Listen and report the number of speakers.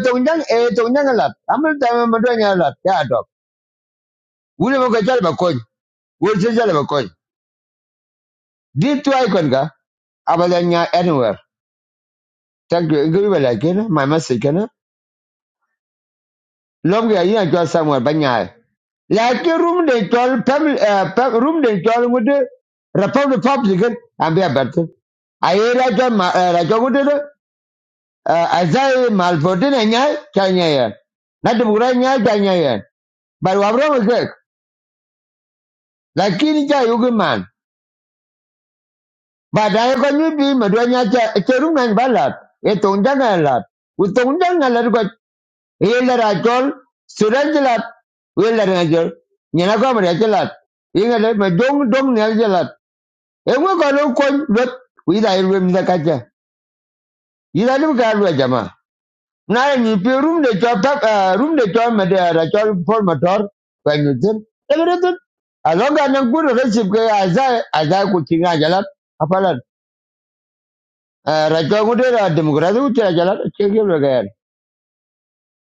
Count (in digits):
1